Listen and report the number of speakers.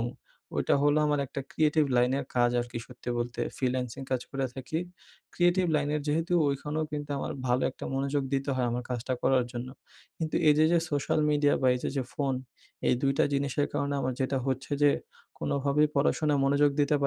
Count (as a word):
one